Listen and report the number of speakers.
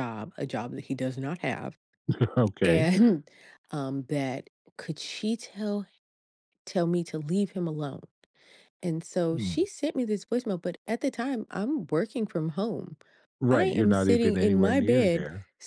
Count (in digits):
2